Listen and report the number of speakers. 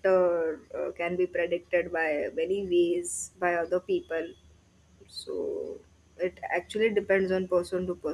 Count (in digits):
1